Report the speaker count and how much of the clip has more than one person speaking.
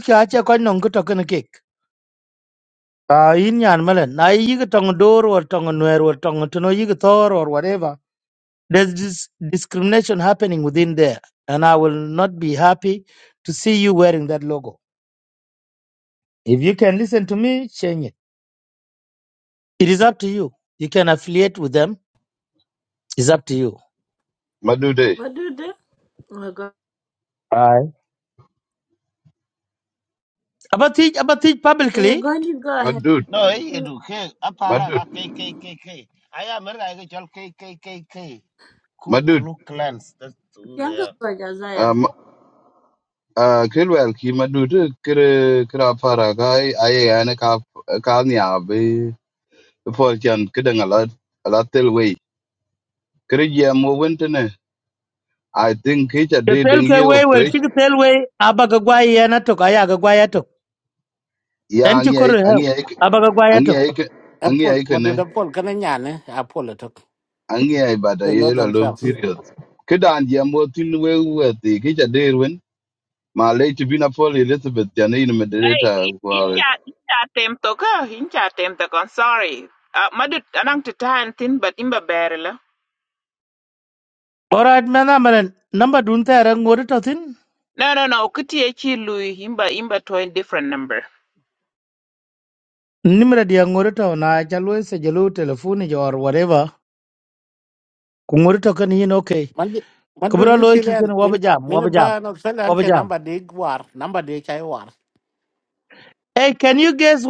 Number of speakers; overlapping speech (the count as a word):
six, about 7%